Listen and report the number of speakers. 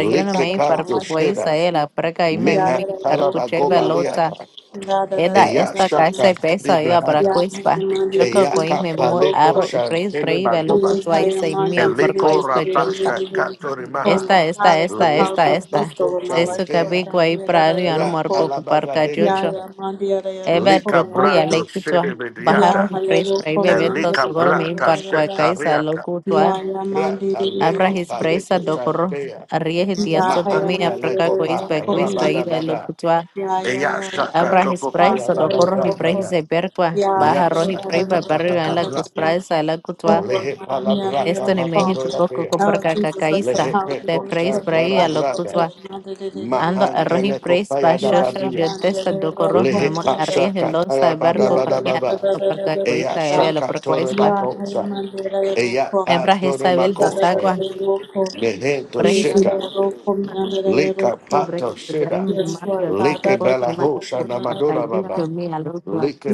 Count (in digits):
3